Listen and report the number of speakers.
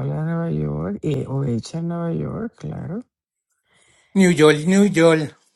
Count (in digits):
2